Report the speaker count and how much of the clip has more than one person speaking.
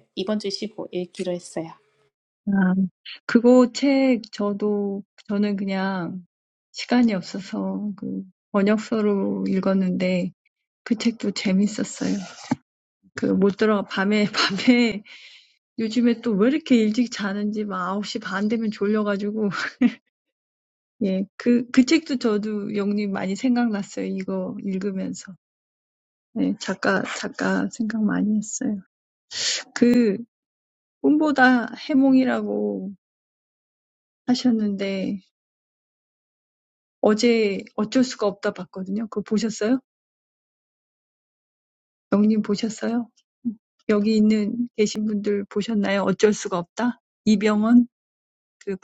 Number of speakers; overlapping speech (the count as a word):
two, no overlap